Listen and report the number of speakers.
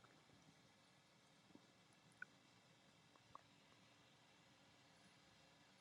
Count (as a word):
zero